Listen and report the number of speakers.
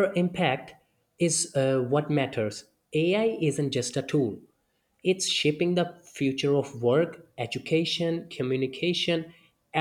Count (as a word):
one